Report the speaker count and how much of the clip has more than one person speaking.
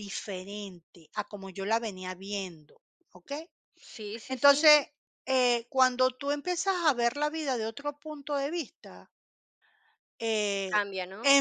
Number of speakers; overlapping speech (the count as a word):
two, about 6%